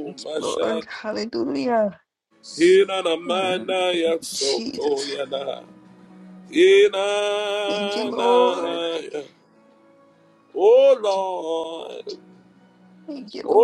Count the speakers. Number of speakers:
2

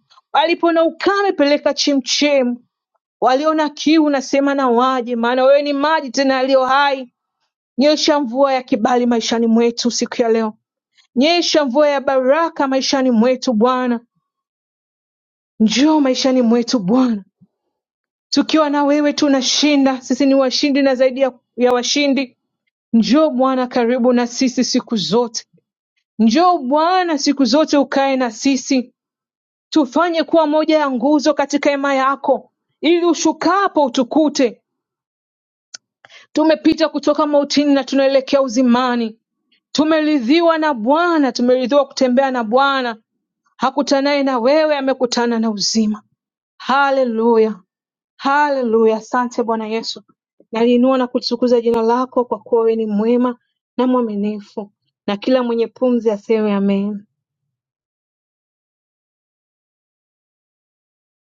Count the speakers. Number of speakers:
1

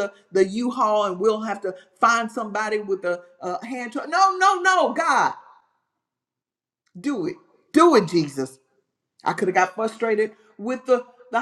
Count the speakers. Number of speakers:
1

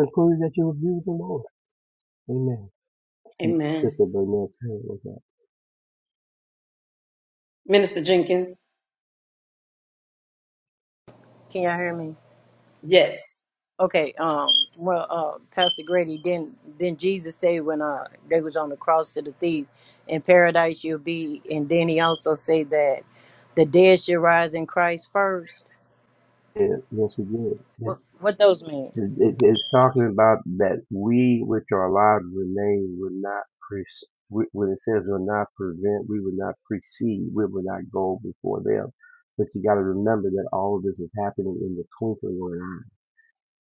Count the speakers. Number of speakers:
3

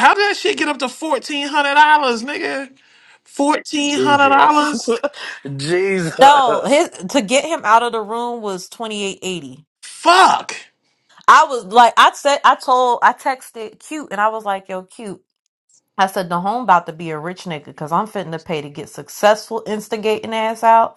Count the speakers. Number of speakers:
3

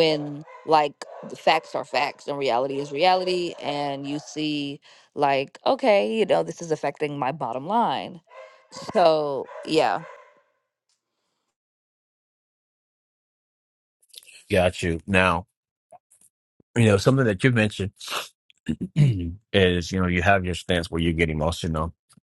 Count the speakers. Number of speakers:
2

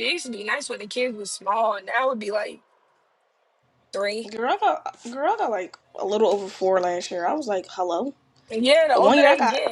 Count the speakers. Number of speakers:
2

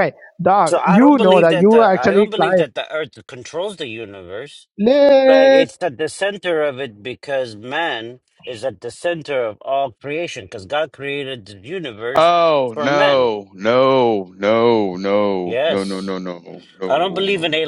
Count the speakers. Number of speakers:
3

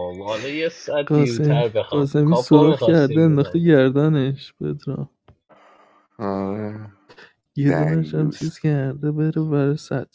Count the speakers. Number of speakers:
3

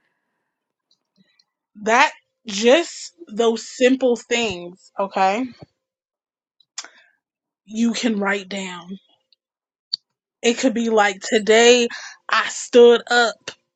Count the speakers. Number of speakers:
1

